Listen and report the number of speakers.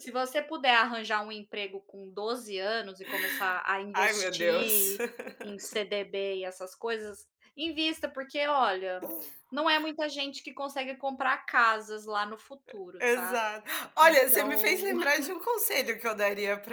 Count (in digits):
2